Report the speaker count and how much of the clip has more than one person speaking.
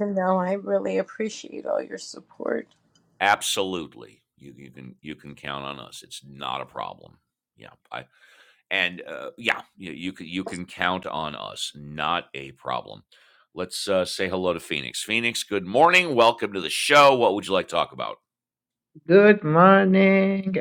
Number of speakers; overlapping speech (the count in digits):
3, no overlap